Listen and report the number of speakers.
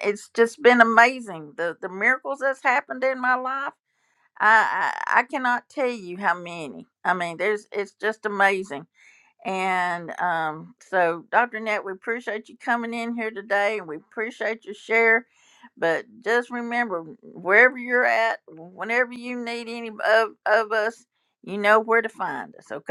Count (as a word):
one